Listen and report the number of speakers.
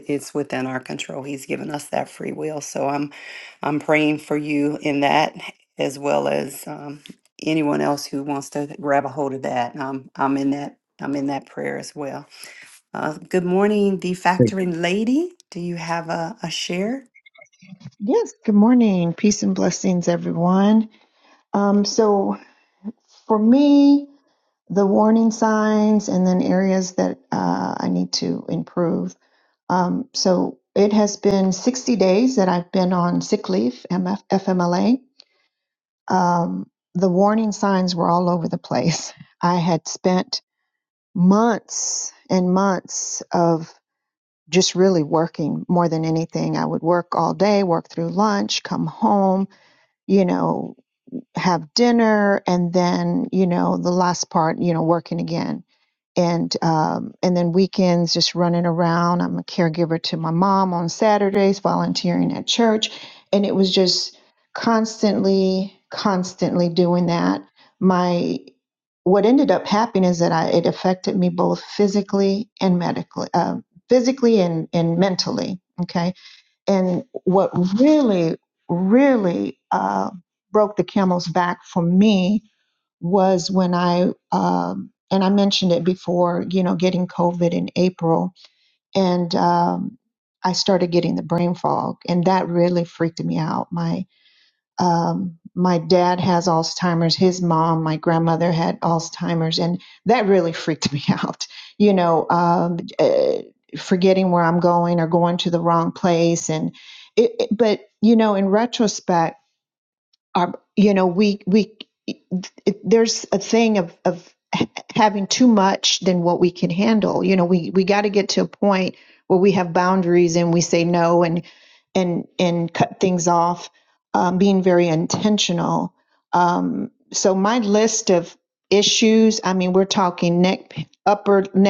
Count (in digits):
2